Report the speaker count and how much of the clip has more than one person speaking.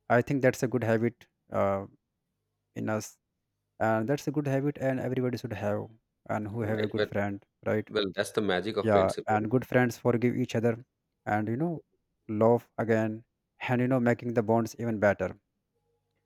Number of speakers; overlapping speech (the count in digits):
2, about 7%